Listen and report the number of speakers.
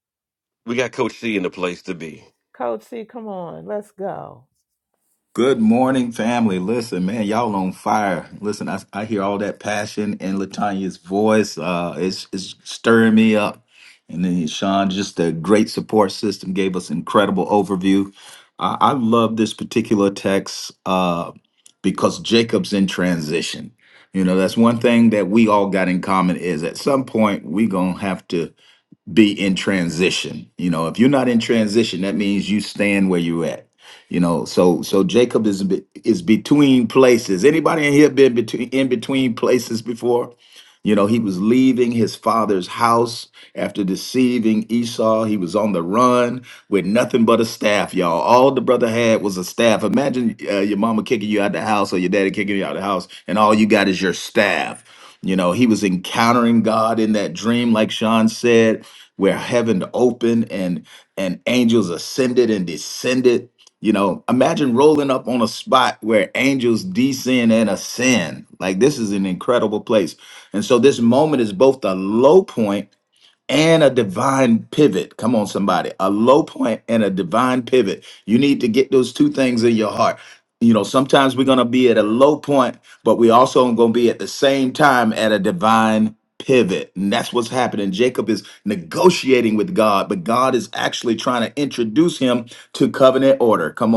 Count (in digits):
3